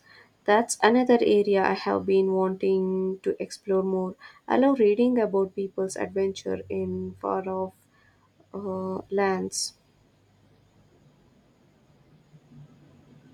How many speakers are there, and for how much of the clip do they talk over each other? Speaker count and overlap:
1, no overlap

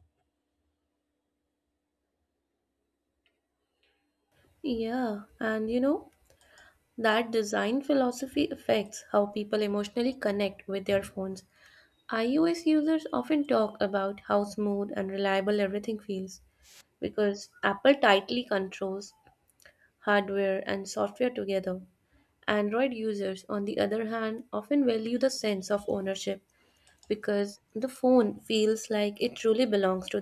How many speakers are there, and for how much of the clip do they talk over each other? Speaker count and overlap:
1, no overlap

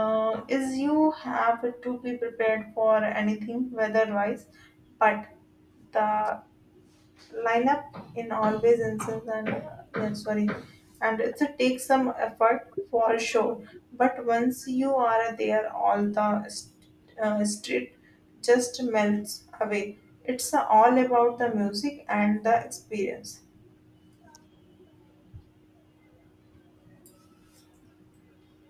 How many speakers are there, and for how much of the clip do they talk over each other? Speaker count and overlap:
1, no overlap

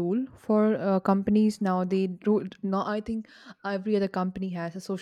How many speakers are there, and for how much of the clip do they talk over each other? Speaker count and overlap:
1, no overlap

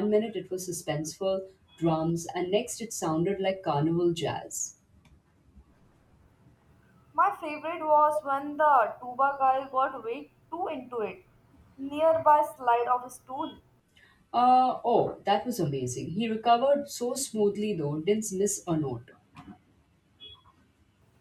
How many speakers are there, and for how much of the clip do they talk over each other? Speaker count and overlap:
2, no overlap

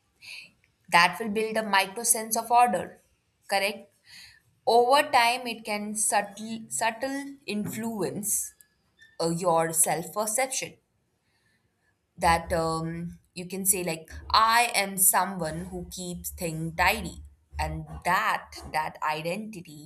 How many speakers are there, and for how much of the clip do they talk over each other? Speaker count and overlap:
1, no overlap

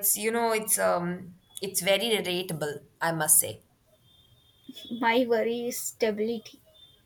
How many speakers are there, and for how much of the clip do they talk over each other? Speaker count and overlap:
2, no overlap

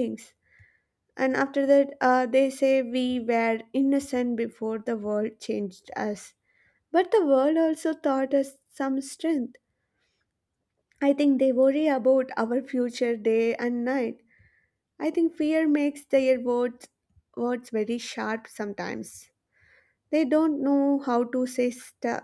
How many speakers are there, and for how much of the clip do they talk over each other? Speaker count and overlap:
1, no overlap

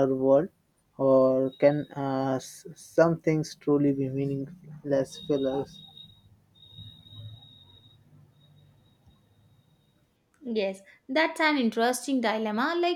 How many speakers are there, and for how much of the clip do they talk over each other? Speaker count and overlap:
2, no overlap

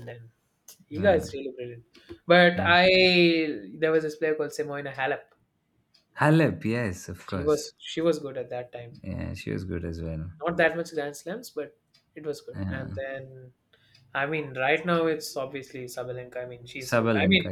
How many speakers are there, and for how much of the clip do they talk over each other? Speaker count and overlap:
2, about 11%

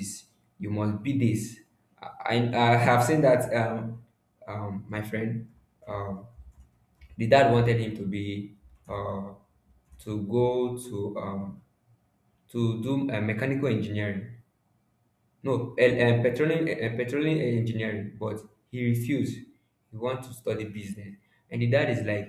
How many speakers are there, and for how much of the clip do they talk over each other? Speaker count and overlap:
1, no overlap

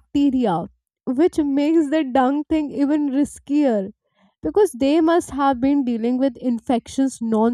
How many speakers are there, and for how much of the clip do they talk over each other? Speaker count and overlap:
1, no overlap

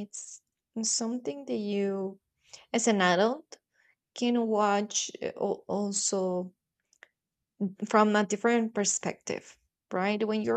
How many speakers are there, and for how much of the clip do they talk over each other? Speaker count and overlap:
1, no overlap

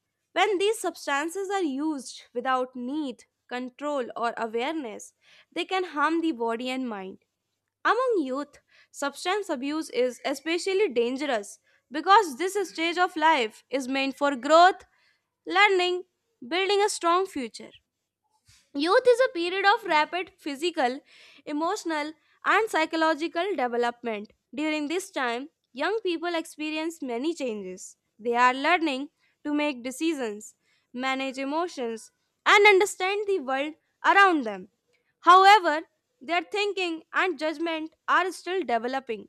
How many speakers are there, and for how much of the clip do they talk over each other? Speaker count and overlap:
1, no overlap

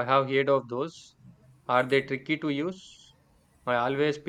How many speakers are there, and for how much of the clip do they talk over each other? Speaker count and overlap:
1, no overlap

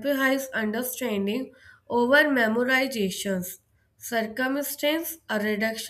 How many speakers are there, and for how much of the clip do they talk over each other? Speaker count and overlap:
1, no overlap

